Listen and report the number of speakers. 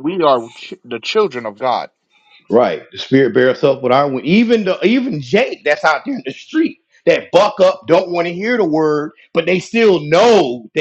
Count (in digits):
2